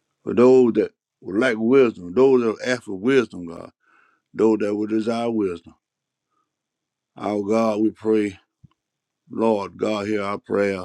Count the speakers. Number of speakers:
one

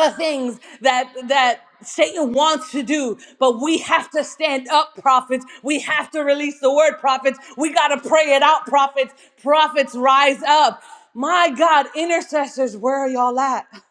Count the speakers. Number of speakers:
one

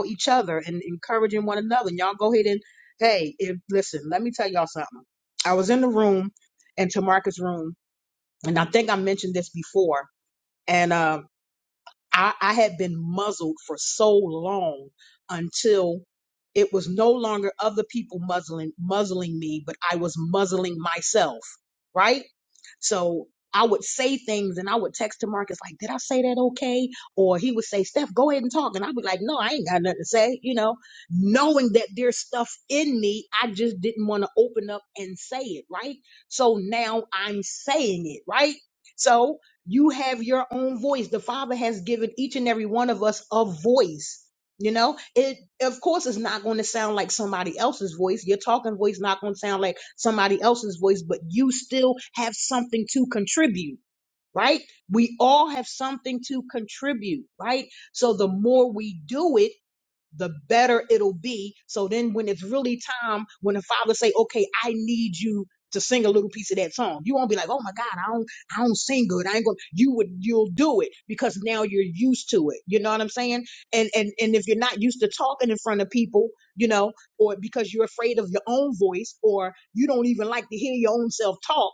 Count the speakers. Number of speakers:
one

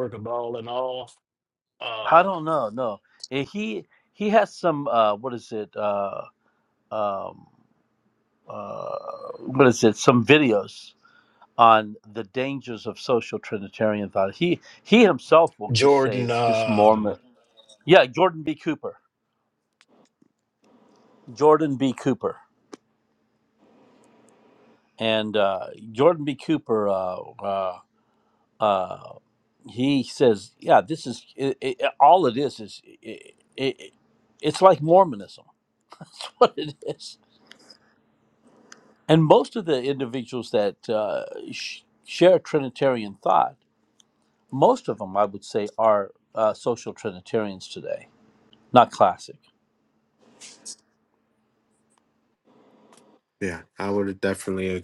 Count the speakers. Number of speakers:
three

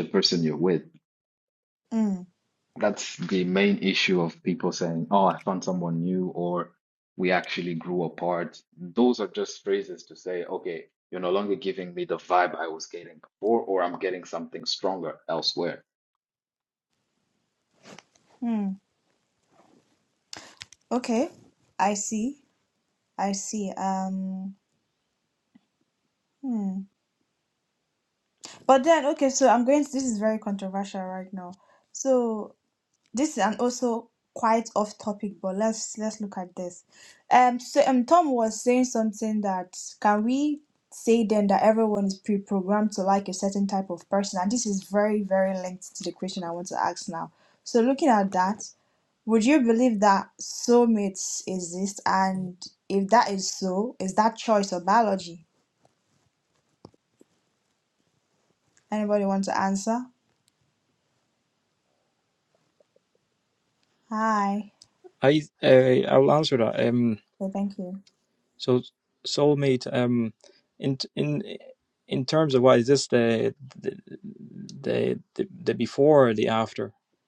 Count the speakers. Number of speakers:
three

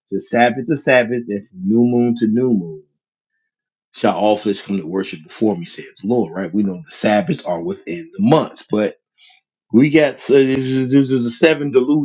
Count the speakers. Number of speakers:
one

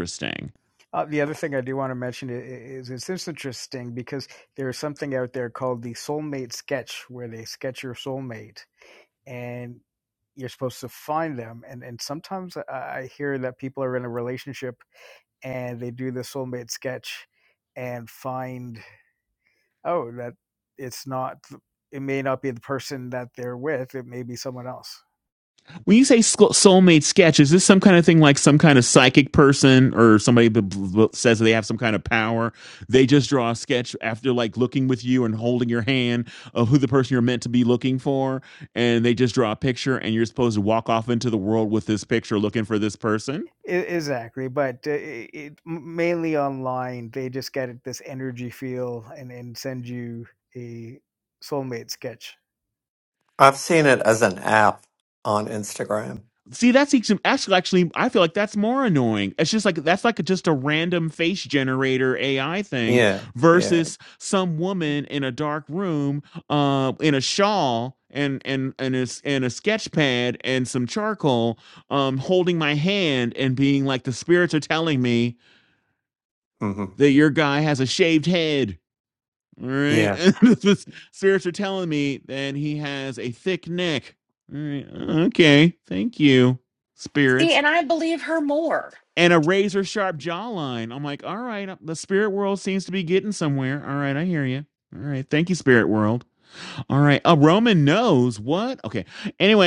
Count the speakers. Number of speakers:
four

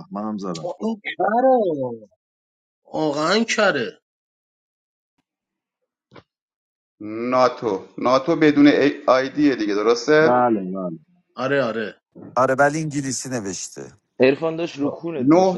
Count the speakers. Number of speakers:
five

